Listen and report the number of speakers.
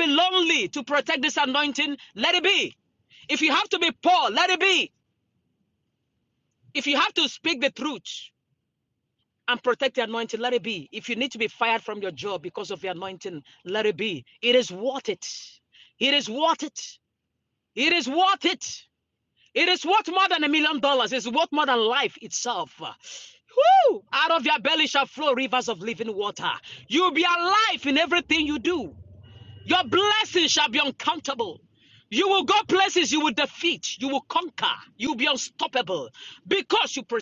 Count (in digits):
1